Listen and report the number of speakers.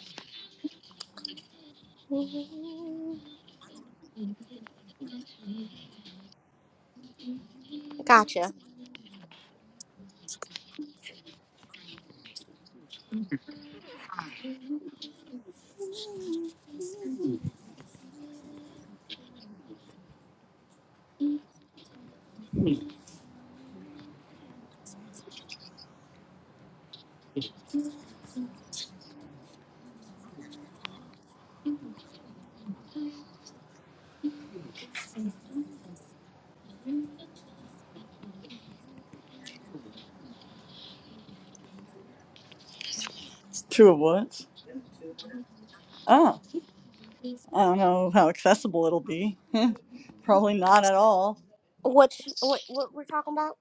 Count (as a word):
two